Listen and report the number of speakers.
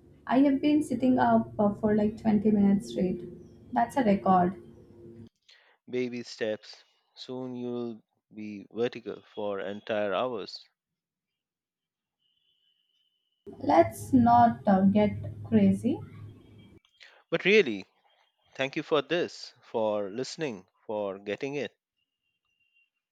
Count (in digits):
2